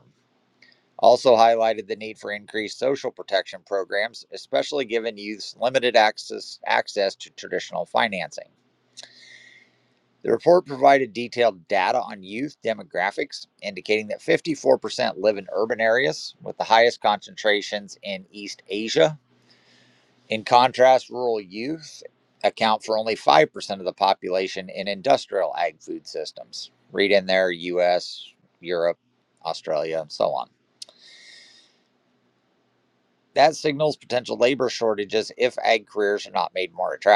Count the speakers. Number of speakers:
1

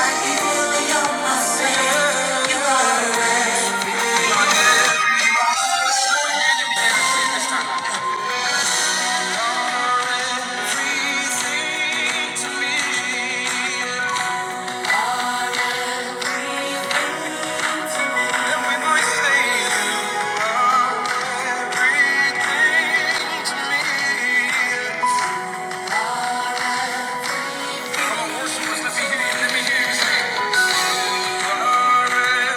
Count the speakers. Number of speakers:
0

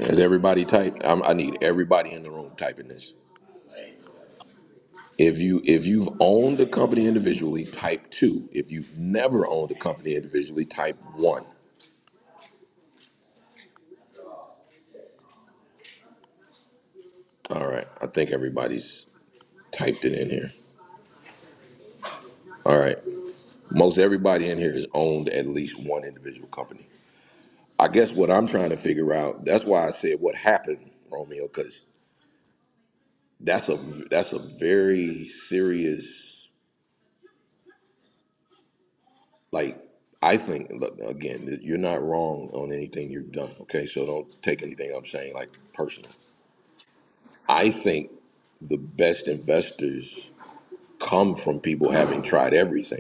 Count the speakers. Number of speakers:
1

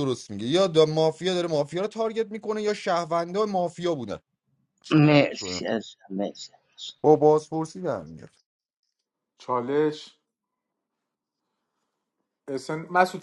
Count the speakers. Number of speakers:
3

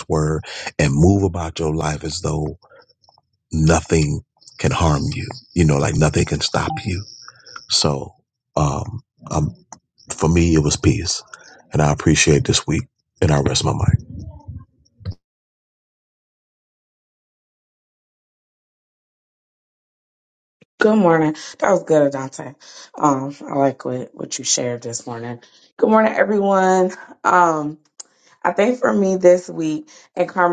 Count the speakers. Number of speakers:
2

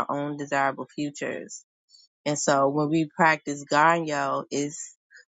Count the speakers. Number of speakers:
1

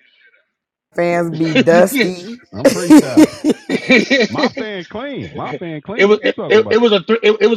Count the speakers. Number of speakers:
3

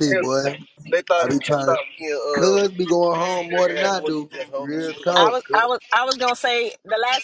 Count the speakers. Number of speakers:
3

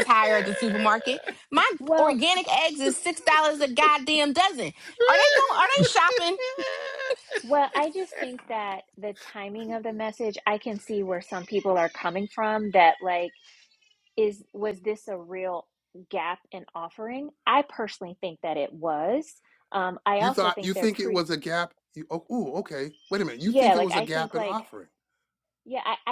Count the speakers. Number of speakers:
3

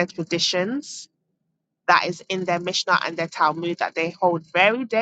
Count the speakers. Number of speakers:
1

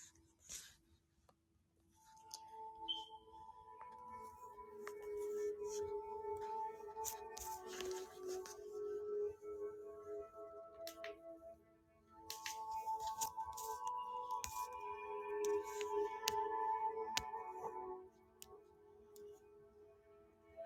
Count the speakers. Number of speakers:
0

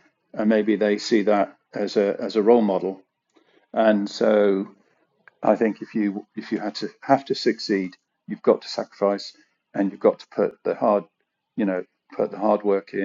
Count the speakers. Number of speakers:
1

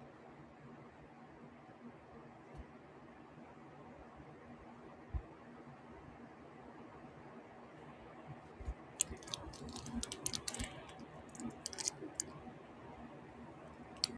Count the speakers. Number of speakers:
0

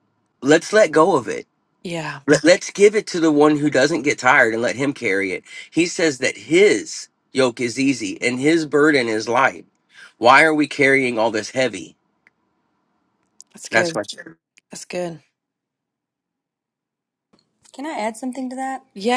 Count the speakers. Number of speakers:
3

